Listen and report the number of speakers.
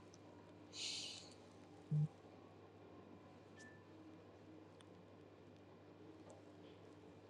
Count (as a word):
zero